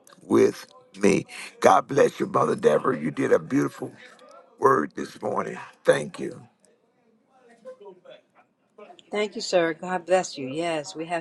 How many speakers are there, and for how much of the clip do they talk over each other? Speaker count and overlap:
2, no overlap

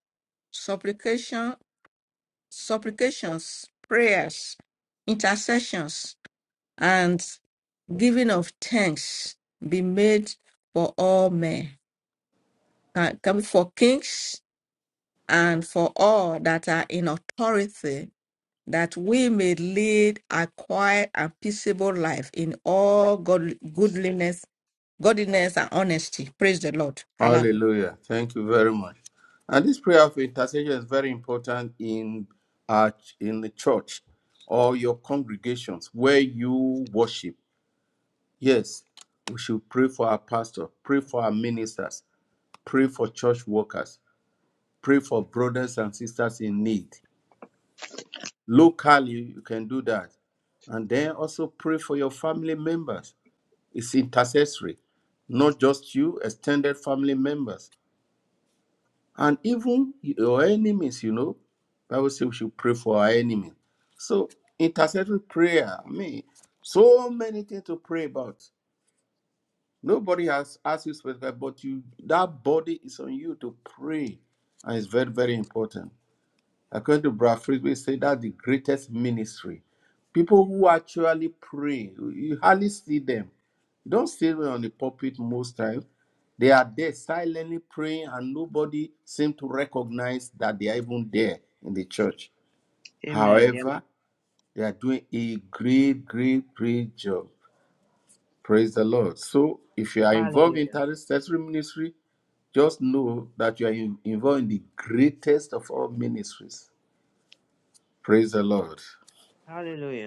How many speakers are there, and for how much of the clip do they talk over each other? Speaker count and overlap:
3, about 2%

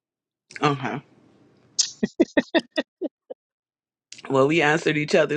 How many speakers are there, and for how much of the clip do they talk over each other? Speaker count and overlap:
1, no overlap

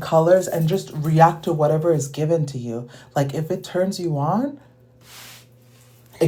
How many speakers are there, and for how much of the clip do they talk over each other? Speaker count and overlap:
1, no overlap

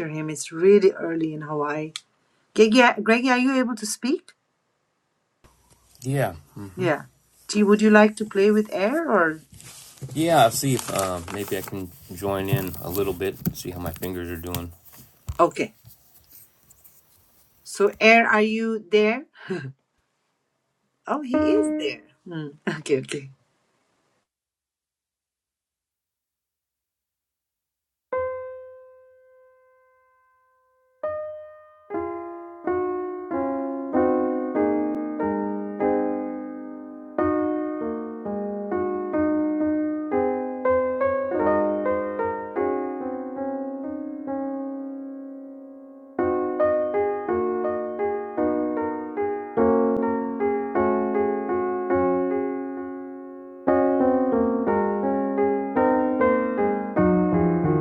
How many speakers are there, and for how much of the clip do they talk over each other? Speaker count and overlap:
2, no overlap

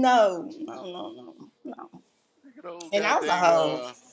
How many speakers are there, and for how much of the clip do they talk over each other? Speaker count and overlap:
2, about 22%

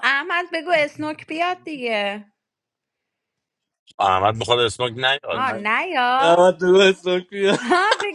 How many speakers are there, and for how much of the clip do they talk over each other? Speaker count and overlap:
3, about 4%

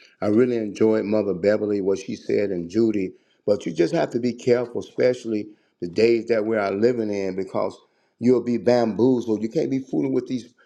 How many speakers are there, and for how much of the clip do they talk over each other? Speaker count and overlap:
1, no overlap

